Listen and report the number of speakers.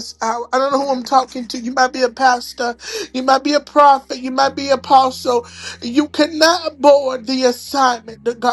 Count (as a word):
one